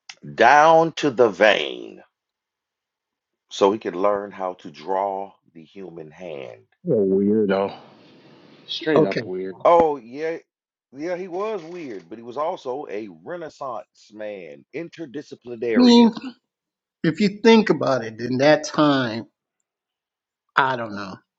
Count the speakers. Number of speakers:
3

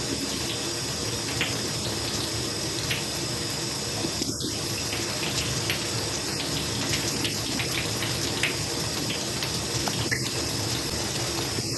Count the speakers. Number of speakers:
0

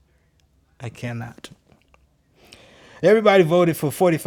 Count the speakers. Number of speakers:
1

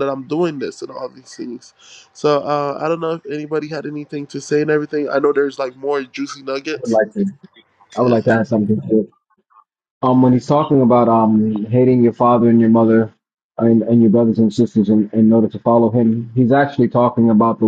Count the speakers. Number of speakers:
2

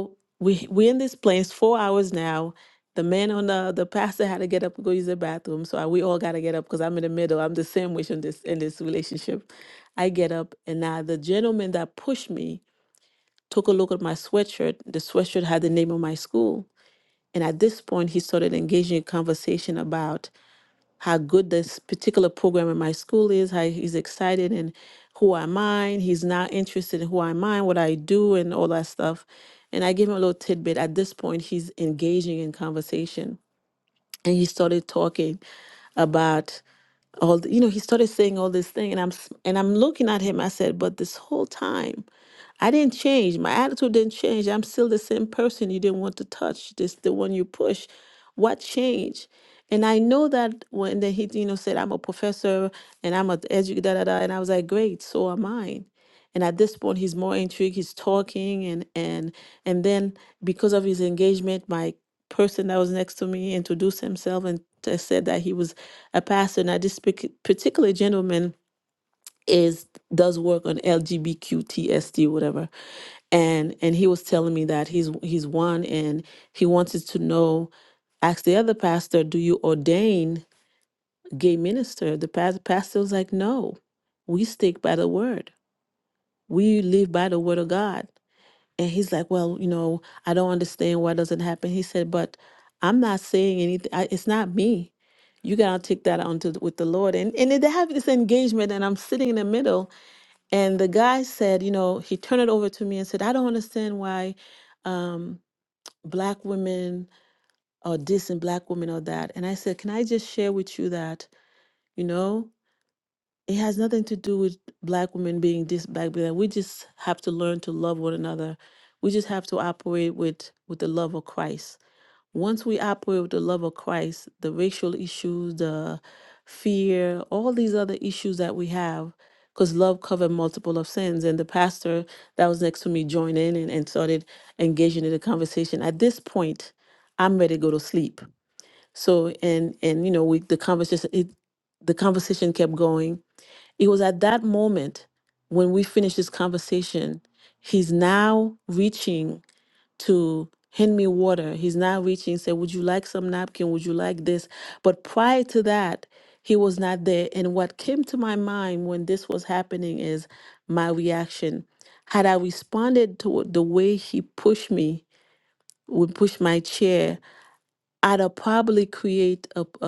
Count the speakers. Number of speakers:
1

